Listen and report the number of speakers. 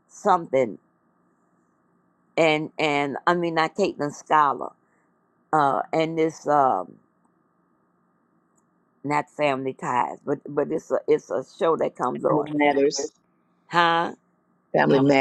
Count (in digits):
2